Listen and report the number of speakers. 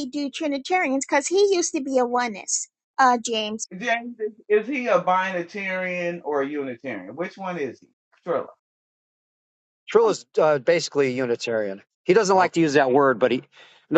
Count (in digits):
3